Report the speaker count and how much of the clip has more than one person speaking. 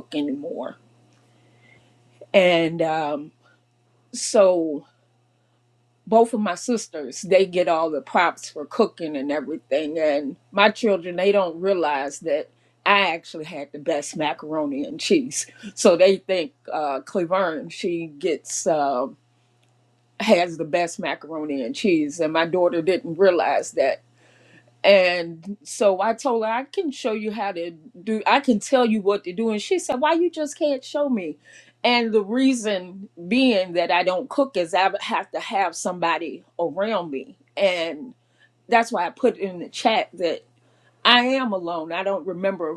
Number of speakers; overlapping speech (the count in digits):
1, no overlap